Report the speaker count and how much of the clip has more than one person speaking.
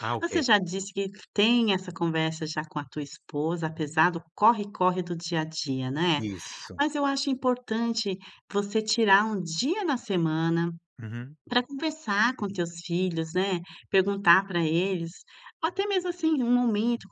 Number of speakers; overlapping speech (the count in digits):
2, about 2%